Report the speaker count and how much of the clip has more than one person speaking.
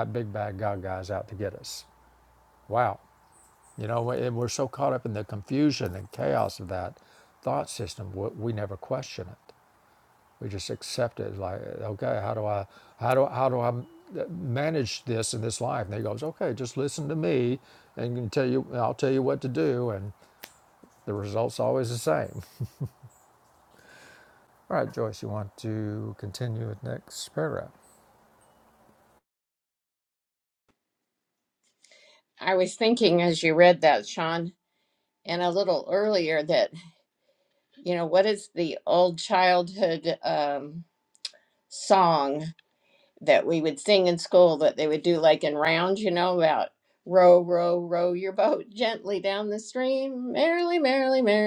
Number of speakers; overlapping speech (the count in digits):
2, no overlap